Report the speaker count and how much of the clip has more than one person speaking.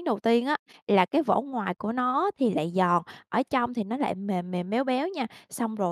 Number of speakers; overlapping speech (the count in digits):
1, no overlap